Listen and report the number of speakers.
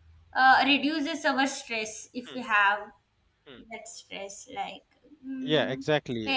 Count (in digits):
2